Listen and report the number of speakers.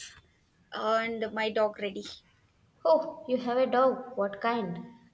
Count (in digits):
2